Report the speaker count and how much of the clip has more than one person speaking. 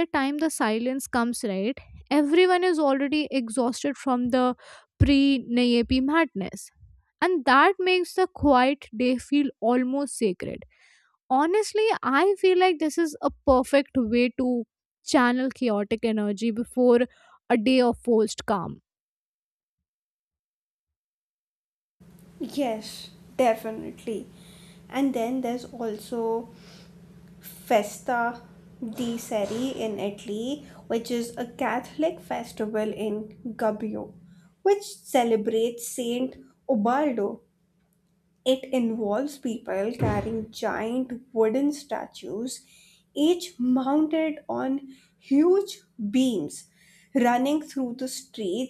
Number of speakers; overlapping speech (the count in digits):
2, no overlap